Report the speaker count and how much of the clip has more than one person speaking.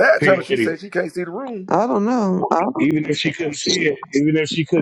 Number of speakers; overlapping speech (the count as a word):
three, about 13%